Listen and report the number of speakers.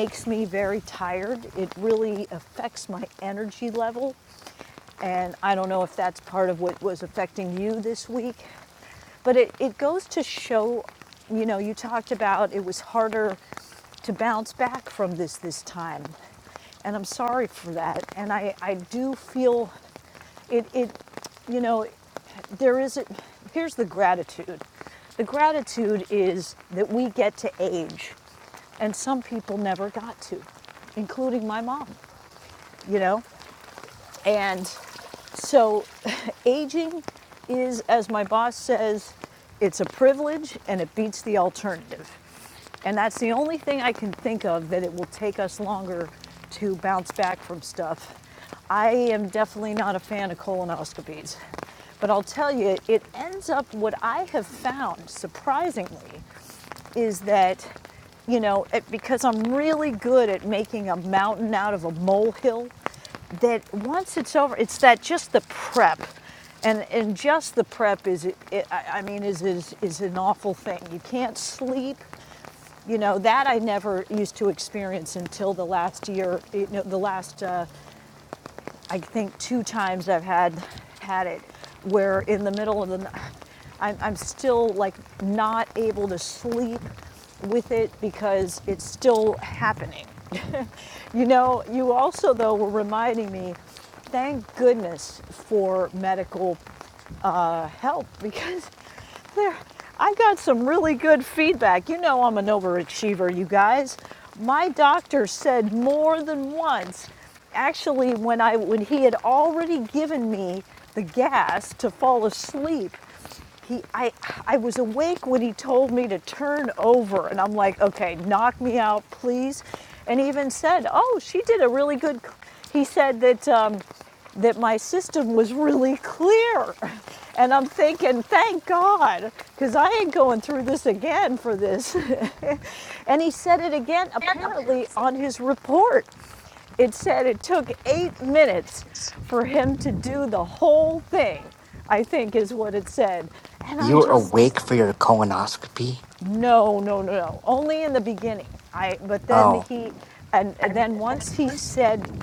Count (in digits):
2